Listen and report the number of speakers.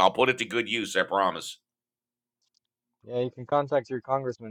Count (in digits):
2